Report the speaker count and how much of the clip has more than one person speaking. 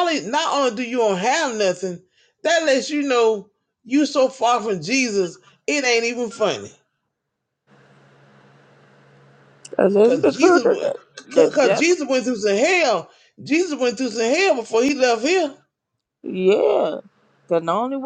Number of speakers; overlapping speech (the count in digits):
2, about 8%